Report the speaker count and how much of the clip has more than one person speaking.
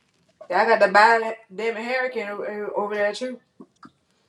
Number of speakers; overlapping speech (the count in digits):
1, no overlap